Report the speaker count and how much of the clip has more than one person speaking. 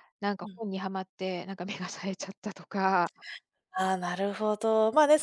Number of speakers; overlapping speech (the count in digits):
2, about 1%